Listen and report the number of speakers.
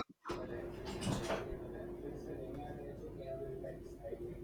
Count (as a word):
zero